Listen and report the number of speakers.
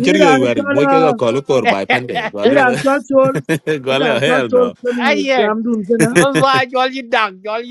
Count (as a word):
three